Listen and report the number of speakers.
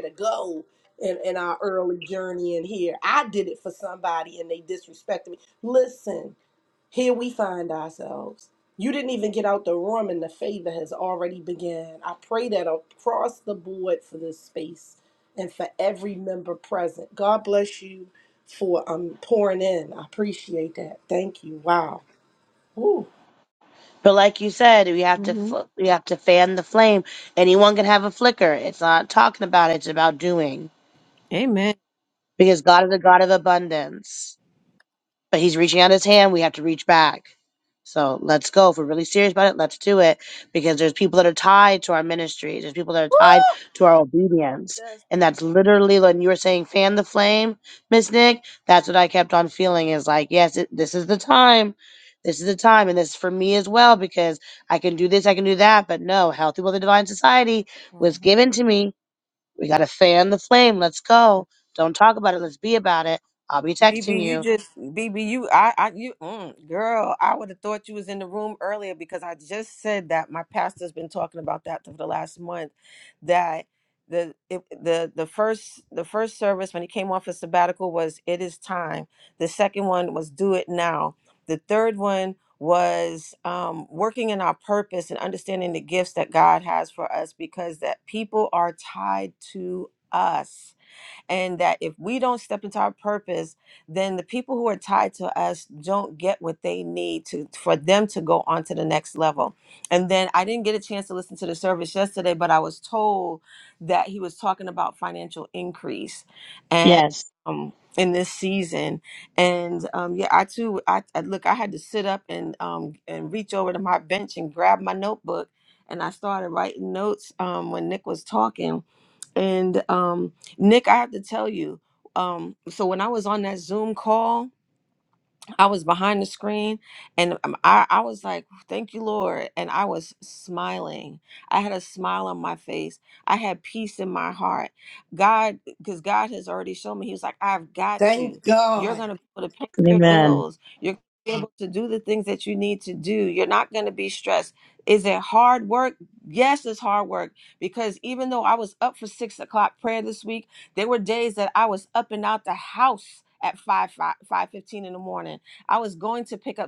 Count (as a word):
three